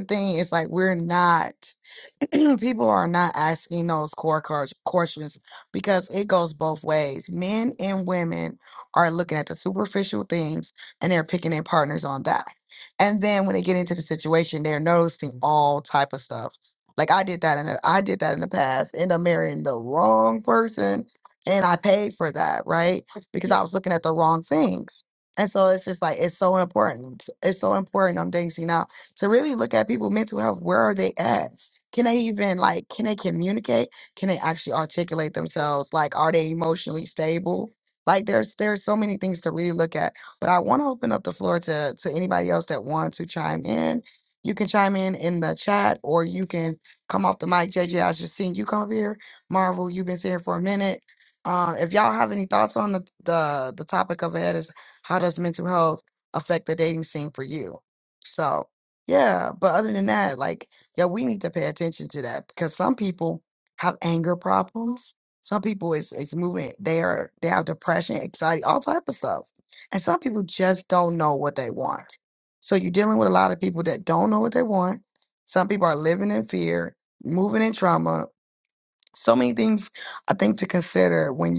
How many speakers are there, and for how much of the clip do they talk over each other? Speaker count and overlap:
one, no overlap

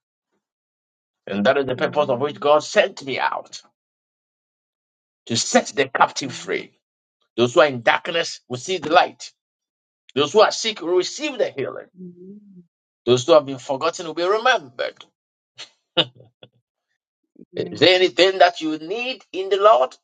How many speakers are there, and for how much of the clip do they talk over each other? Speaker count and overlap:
two, about 7%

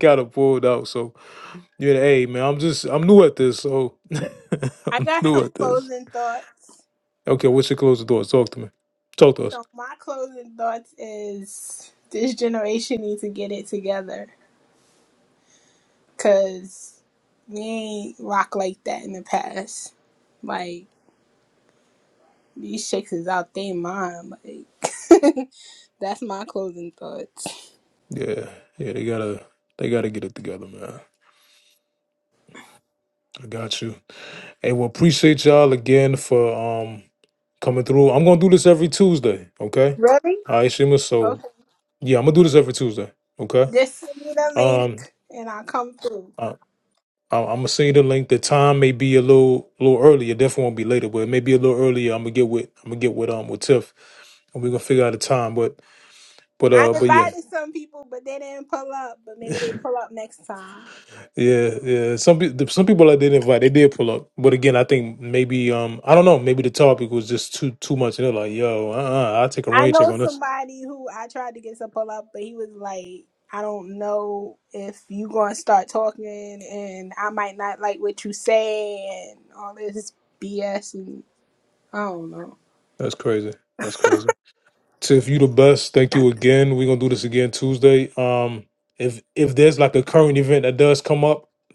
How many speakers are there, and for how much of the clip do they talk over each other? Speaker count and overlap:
two, about 3%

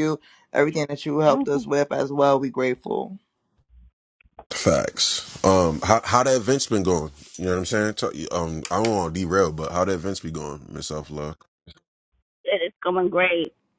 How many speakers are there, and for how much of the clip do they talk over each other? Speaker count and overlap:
three, about 3%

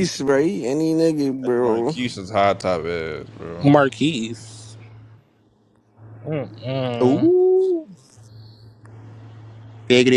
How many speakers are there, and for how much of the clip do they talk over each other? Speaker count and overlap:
four, about 8%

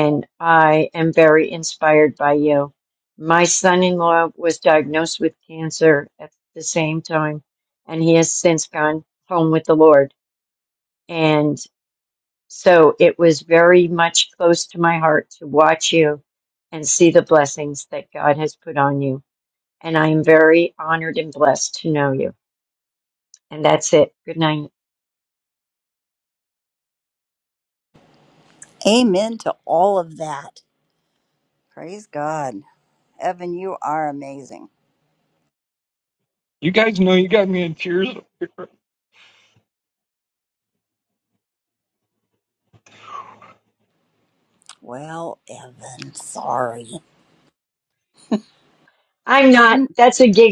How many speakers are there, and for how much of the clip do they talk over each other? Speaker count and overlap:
three, no overlap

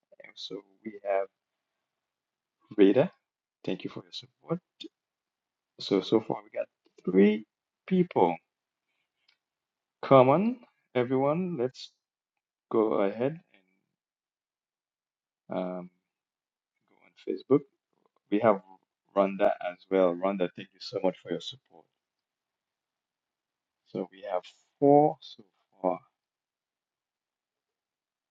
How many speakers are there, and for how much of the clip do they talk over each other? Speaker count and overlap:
one, no overlap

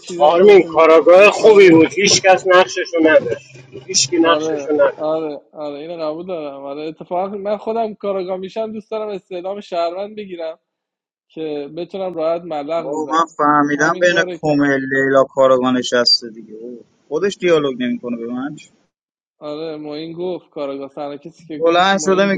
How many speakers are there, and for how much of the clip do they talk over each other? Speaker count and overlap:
three, about 19%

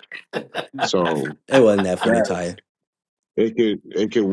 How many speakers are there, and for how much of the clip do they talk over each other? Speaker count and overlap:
two, about 6%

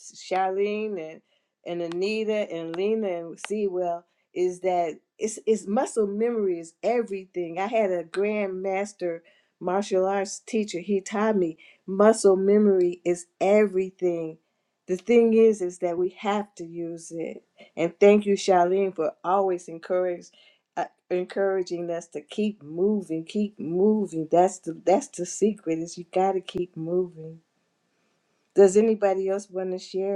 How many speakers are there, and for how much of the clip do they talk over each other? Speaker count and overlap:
one, no overlap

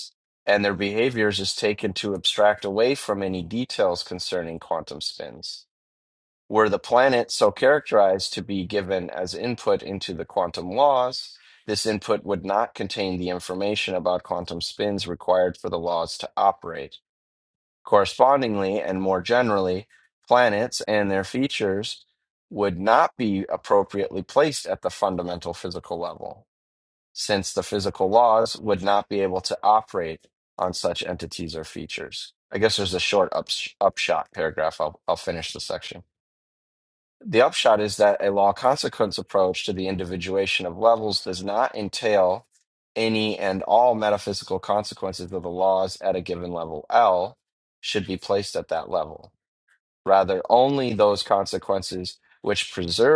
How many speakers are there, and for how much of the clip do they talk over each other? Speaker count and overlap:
one, no overlap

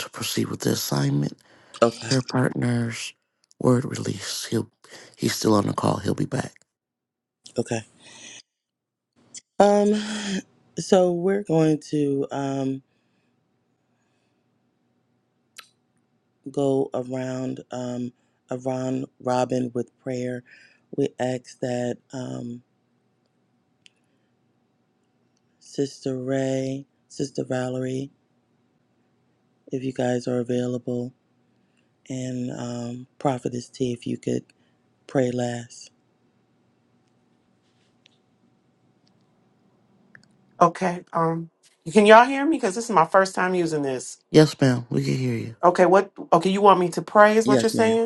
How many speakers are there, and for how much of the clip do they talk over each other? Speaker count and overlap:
three, about 2%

